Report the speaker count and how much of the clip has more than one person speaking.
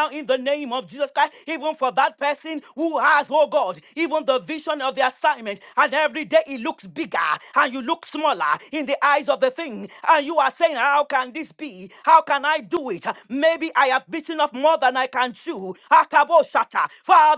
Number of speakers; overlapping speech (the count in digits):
1, no overlap